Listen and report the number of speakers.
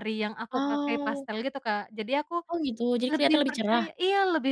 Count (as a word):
two